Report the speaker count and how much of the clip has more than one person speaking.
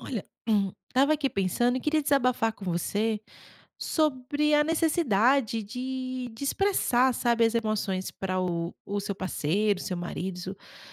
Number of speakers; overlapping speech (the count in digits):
1, no overlap